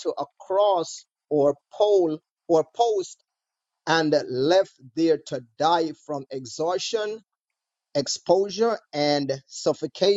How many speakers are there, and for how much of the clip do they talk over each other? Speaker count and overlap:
one, no overlap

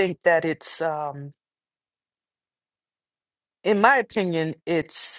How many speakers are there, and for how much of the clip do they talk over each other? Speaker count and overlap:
one, no overlap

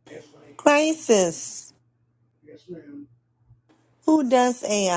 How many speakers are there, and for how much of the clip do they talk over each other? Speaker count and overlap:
two, about 8%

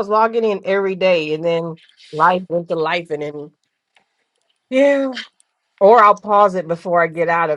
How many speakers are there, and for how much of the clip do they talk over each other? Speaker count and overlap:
one, no overlap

